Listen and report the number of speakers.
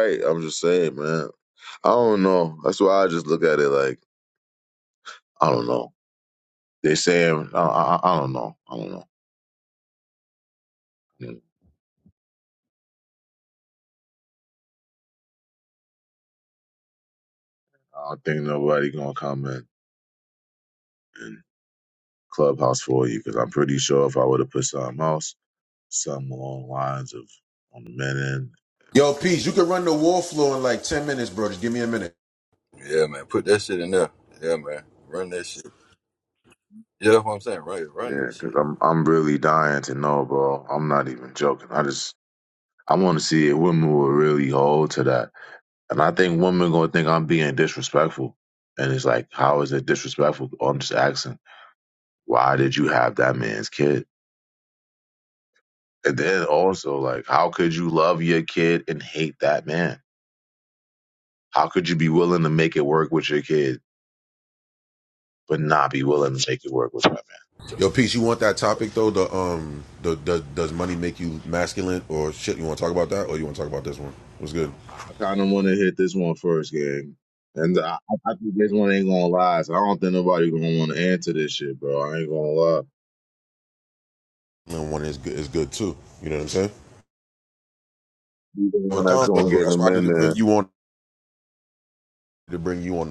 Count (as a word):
three